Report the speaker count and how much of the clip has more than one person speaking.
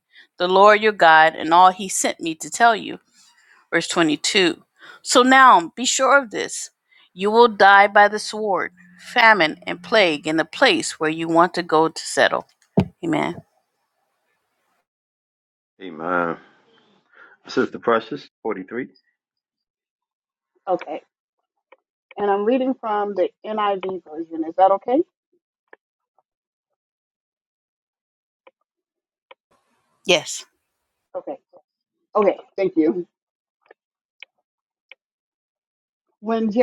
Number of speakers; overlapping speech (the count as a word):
three, no overlap